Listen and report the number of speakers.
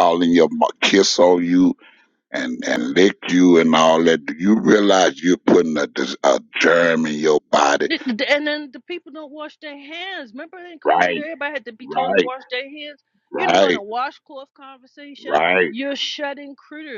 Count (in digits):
2